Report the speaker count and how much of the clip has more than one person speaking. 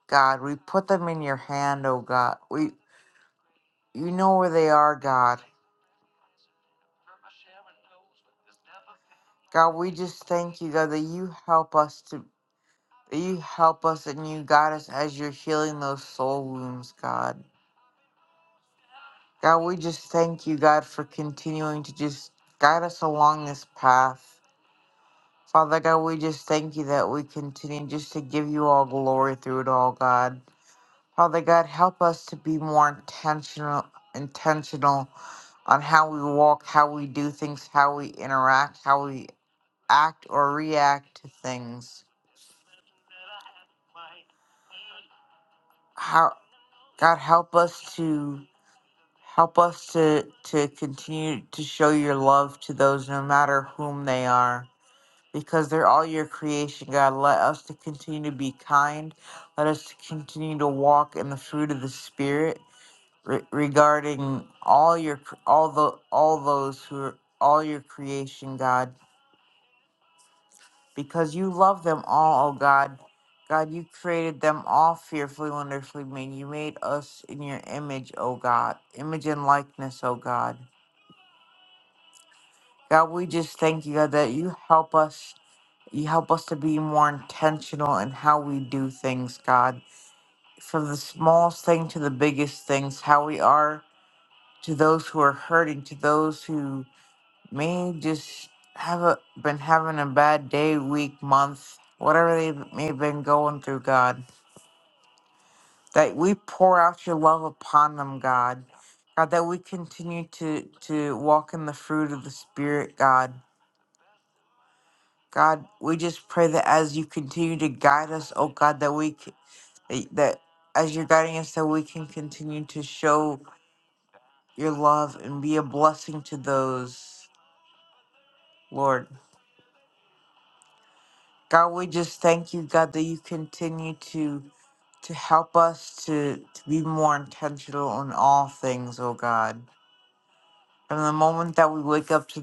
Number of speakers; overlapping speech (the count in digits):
1, no overlap